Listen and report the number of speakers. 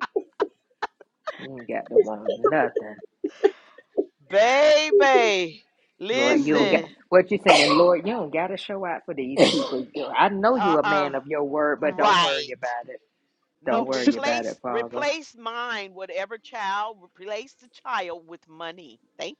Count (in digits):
2